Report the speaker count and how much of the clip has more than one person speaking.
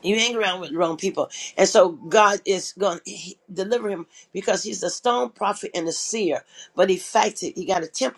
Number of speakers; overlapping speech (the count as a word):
one, no overlap